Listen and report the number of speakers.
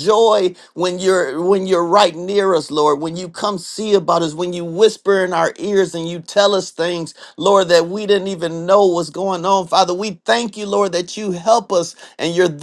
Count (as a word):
one